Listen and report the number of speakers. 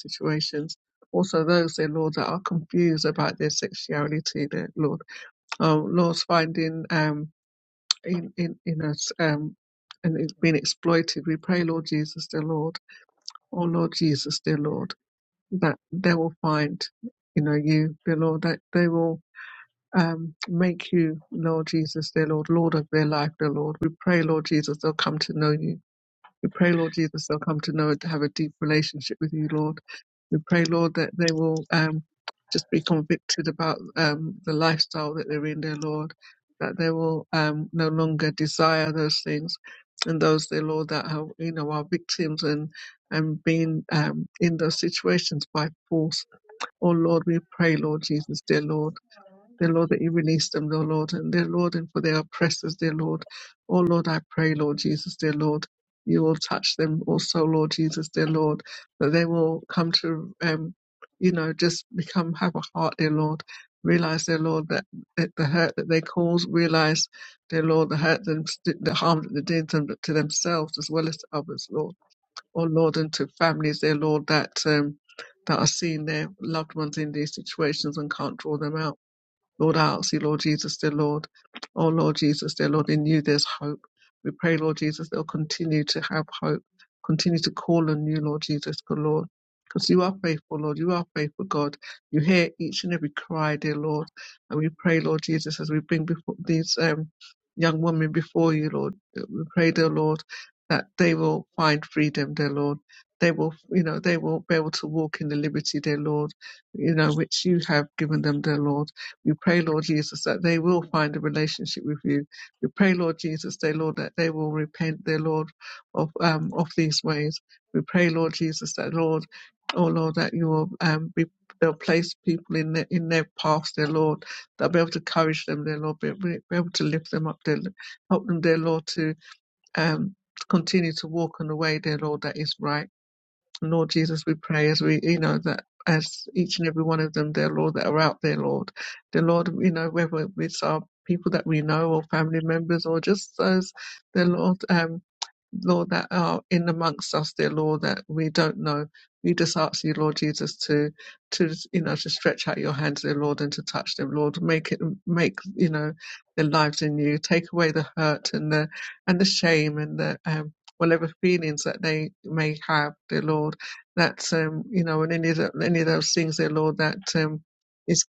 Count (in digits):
1